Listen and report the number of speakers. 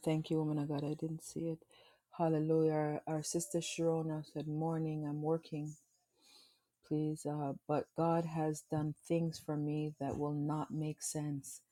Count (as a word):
one